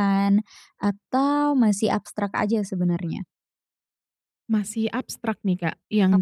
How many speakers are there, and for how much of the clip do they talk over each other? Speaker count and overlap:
2, about 2%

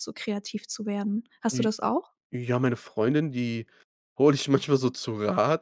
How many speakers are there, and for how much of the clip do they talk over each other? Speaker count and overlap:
2, about 3%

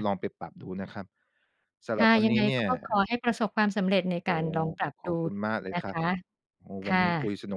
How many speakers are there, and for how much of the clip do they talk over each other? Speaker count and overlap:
2, about 22%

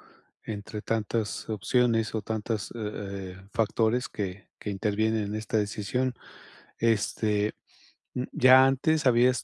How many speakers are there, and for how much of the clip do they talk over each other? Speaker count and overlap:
1, no overlap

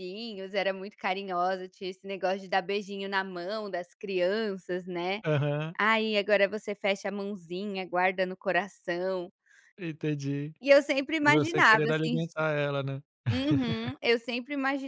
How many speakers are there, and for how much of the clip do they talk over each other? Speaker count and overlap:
2, about 6%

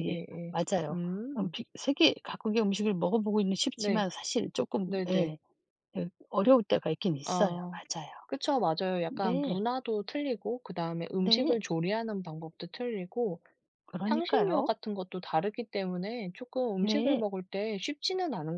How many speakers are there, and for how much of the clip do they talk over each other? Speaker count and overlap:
2, about 19%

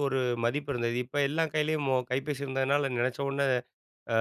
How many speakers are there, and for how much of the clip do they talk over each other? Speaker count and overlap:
1, no overlap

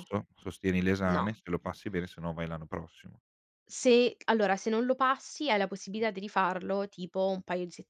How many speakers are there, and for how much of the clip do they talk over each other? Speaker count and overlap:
2, about 4%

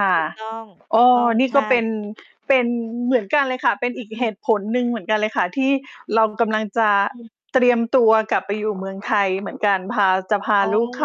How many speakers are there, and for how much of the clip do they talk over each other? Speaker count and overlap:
2, about 11%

